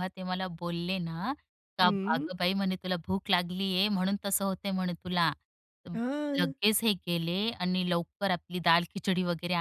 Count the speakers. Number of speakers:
2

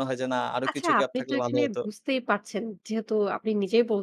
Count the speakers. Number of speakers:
2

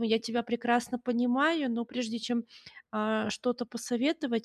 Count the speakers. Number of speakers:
1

